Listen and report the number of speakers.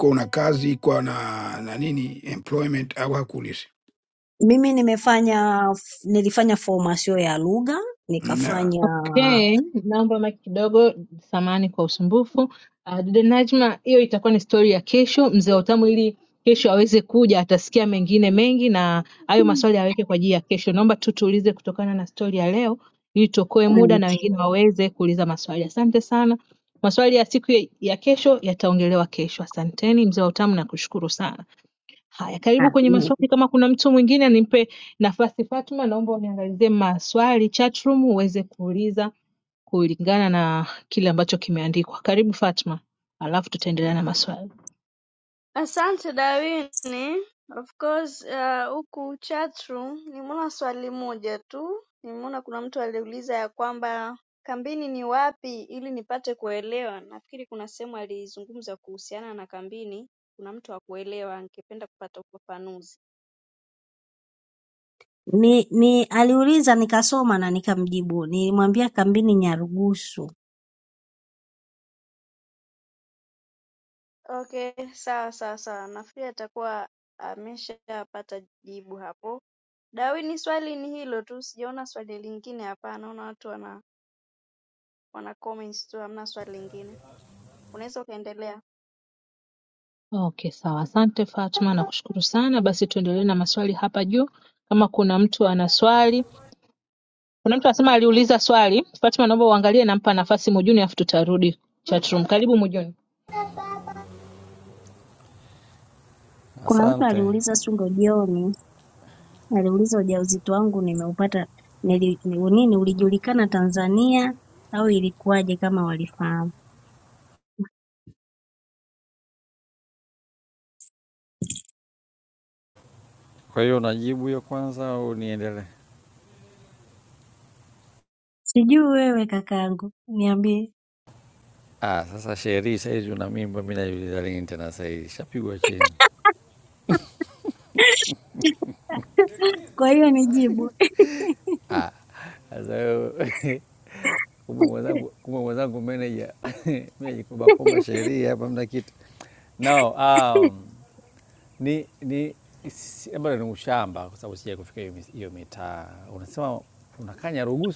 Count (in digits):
5